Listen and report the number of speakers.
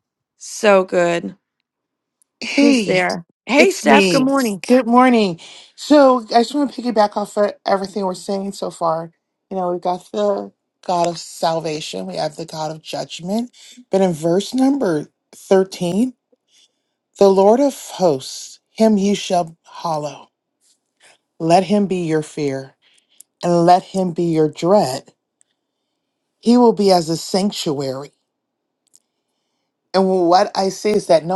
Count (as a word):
two